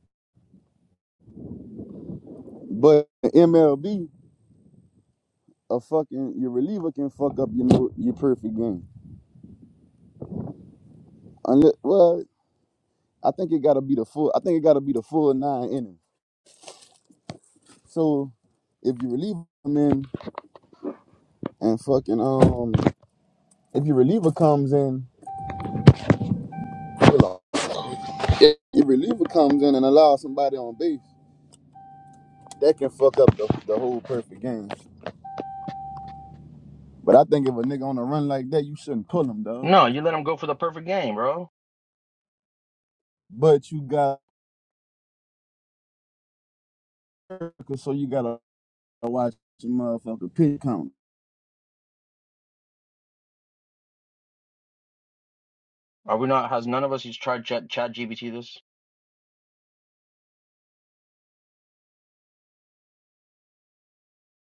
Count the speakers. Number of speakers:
2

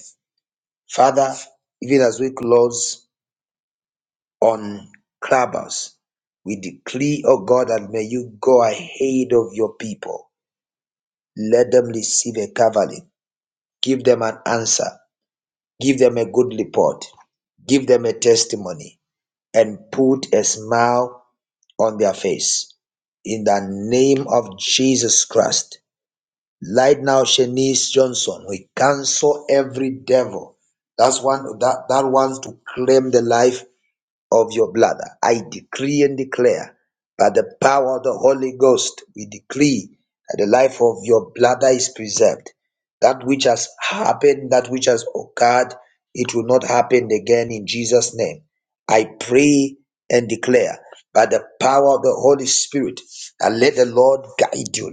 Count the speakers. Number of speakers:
1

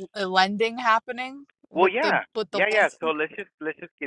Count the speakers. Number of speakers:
2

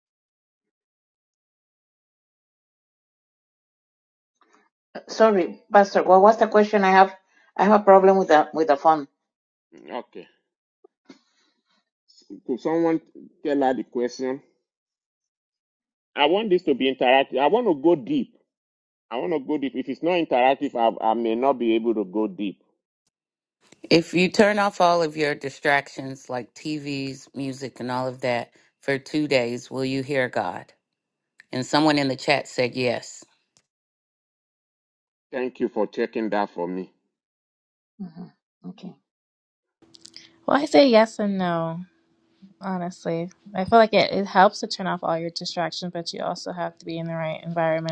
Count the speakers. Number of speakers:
4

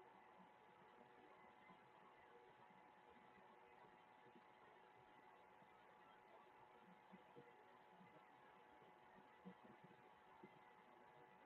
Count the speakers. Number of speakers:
0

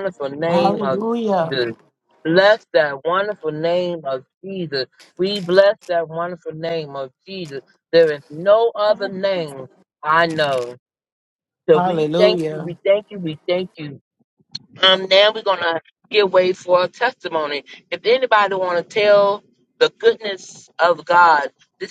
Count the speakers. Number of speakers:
2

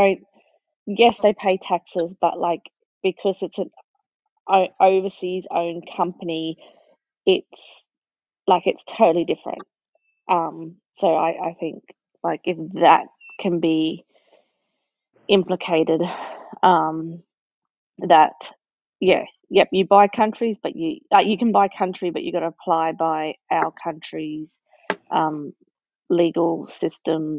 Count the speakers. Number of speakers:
1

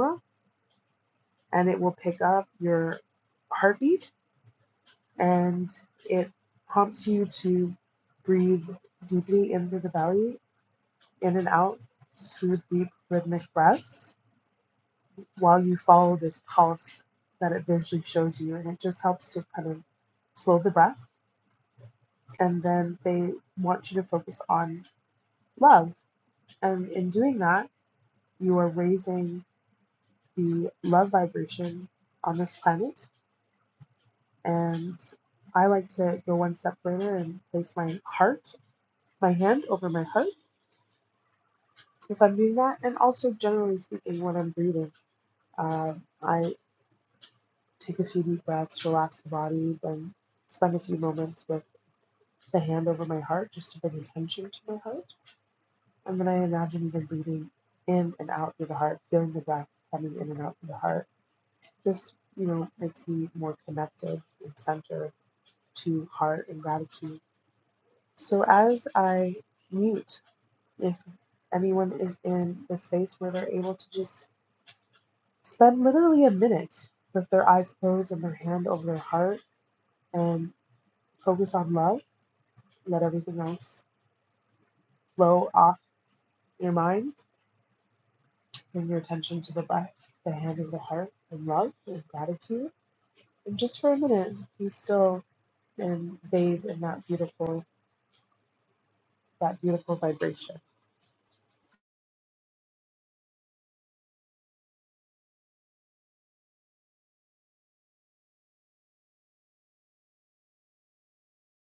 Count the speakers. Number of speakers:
1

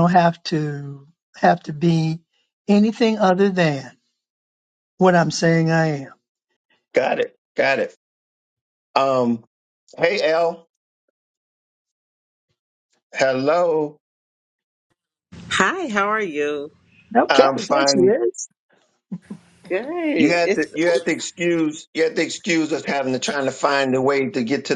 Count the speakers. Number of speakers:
3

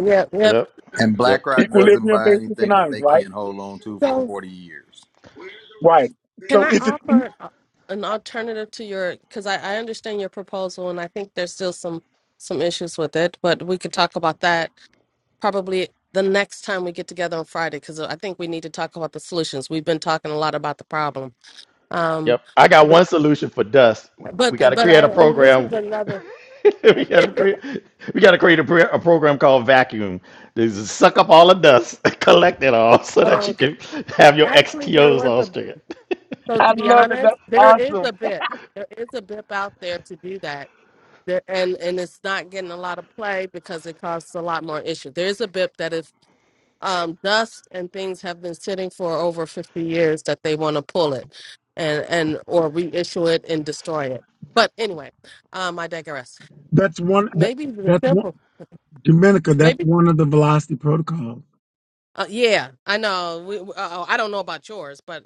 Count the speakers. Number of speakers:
4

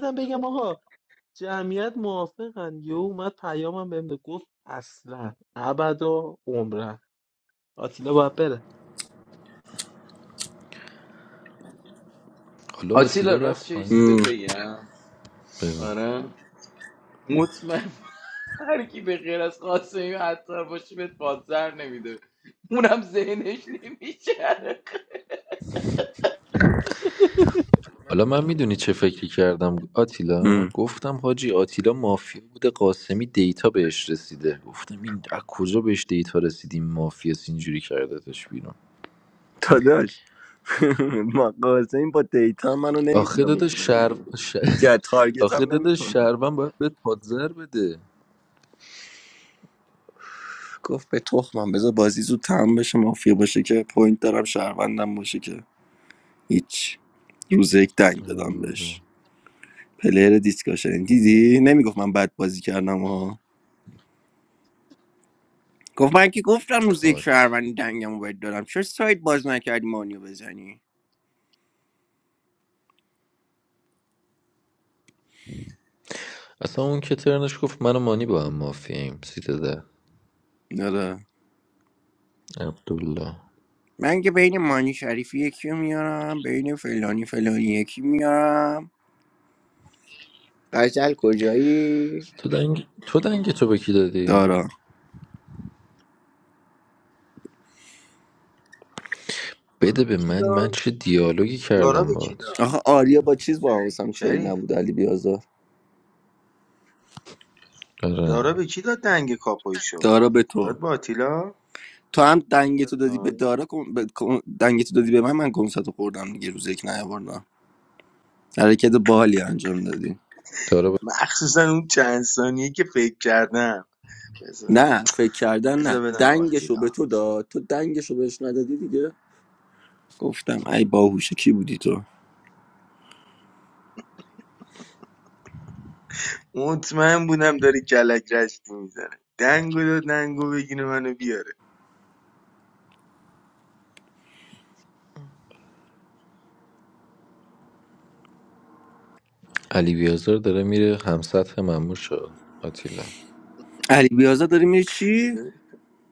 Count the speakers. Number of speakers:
5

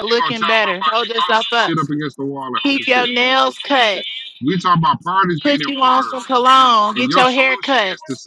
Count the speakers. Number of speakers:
2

